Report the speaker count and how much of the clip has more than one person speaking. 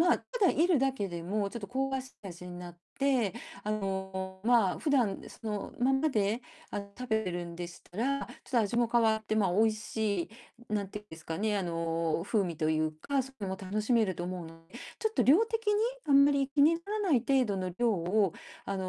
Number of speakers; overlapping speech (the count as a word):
one, no overlap